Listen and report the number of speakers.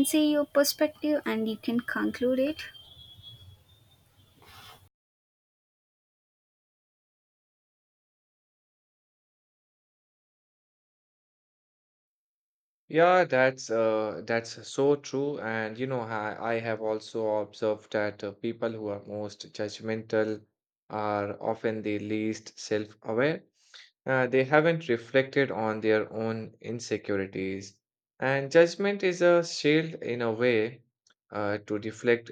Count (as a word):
two